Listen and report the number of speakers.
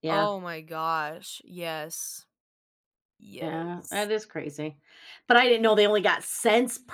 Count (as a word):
two